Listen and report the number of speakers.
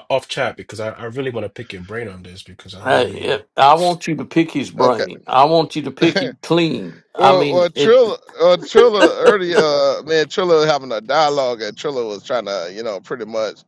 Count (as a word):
three